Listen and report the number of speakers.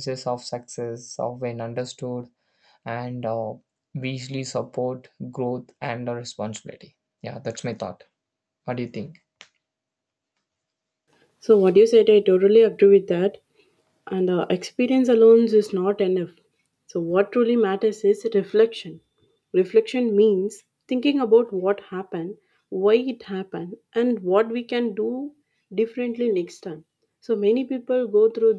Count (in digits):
2